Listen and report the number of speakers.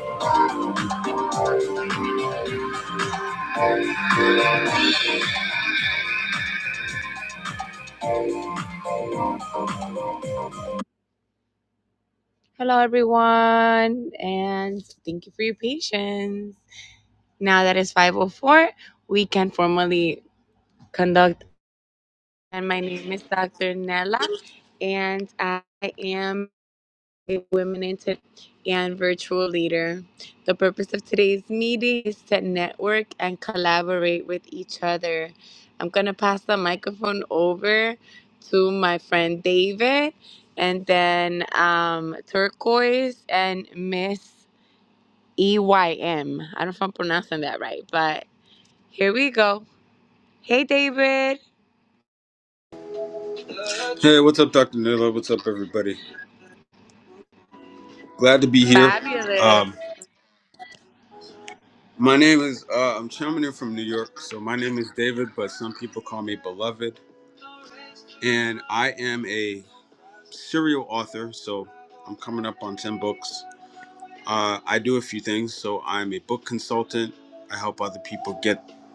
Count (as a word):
two